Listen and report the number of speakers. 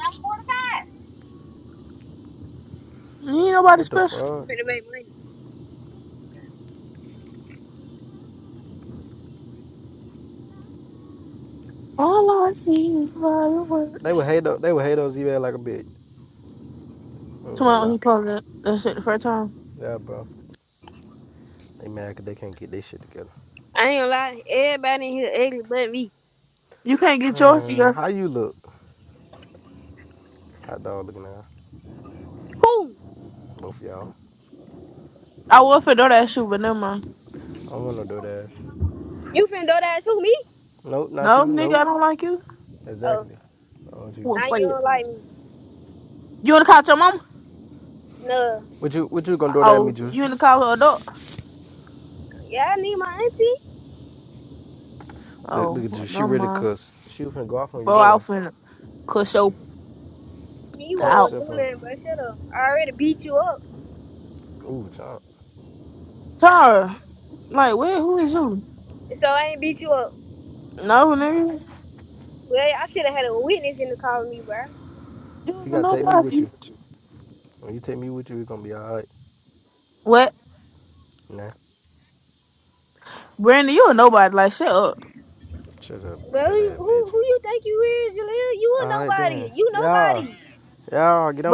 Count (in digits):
3